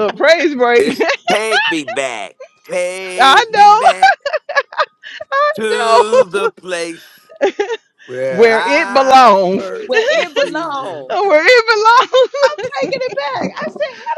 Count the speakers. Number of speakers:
3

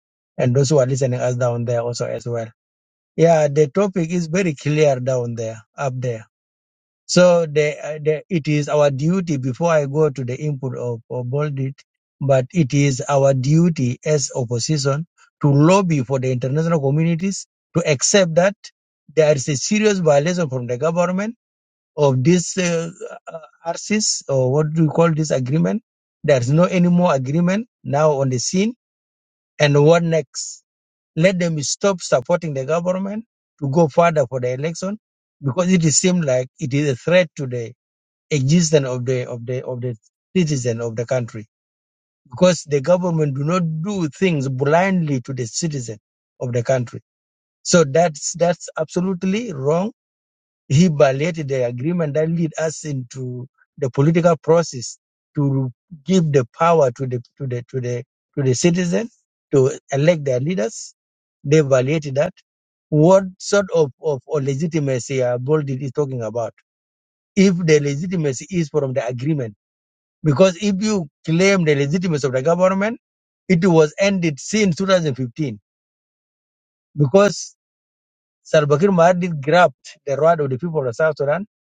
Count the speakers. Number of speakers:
1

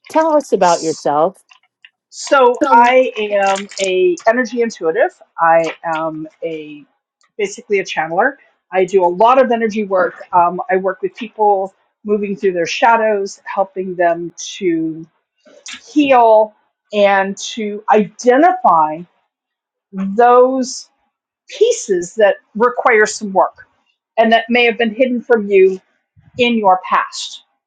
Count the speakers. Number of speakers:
2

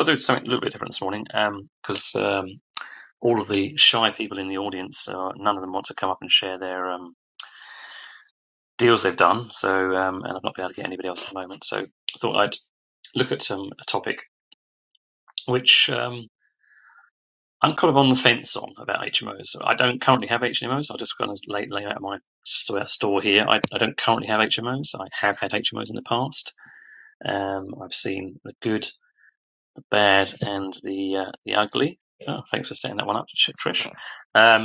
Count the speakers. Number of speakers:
1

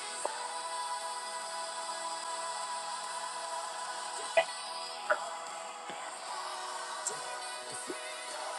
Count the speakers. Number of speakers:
0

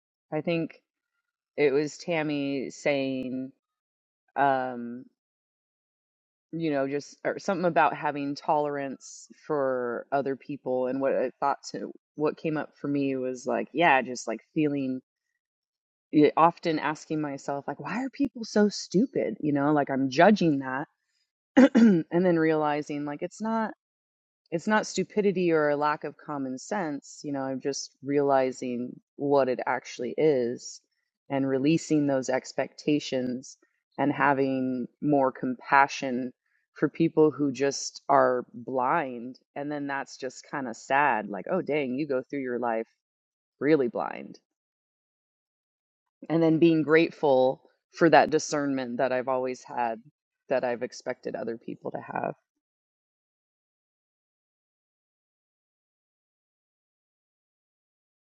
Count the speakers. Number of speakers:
1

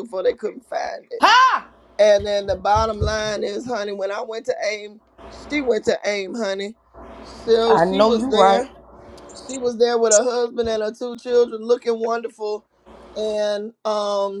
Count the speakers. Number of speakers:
2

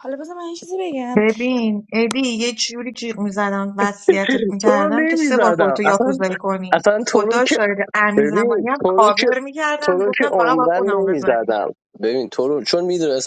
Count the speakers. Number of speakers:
3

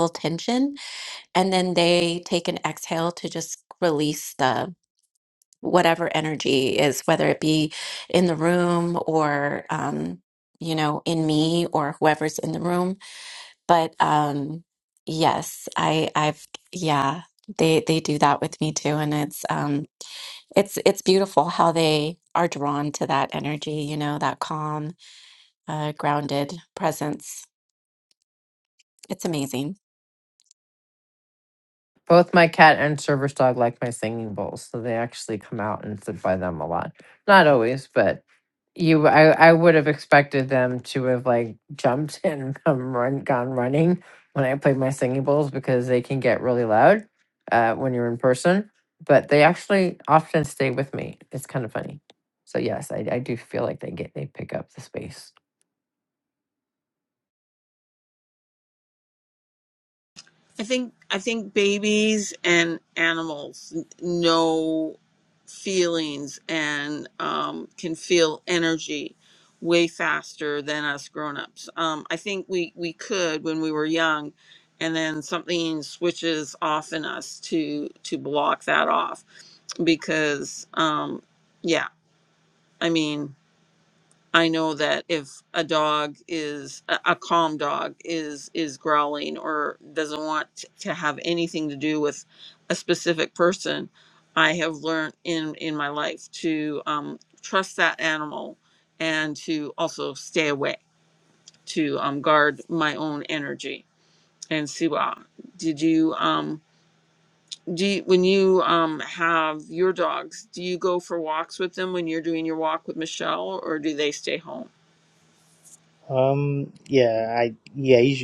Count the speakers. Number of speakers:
4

